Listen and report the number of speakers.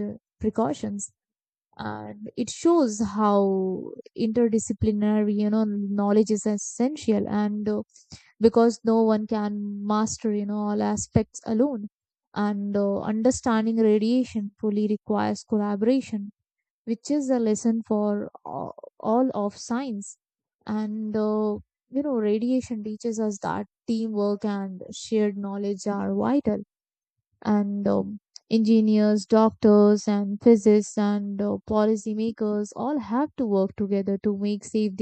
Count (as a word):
one